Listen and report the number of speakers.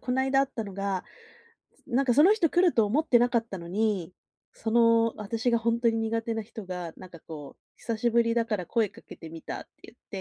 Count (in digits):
1